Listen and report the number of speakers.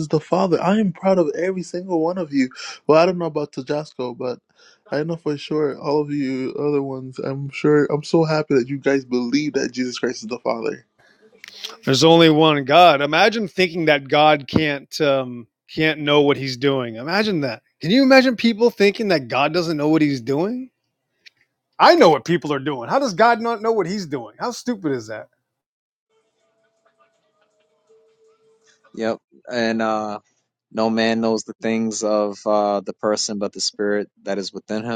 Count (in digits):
3